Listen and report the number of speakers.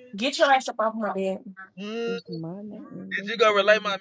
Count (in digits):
3